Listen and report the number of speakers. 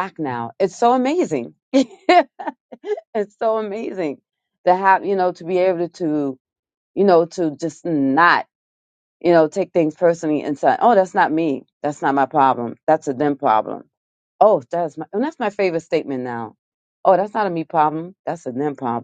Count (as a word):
one